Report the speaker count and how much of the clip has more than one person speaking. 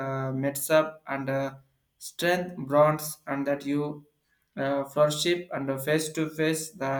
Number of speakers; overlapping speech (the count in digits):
1, no overlap